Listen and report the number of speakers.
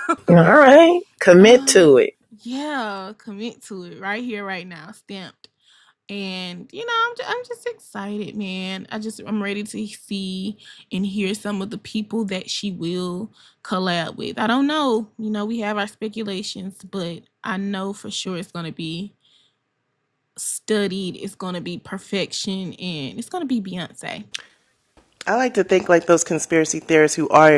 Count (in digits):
3